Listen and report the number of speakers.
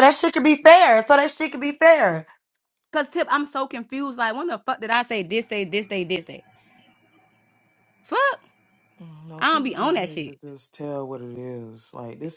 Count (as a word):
three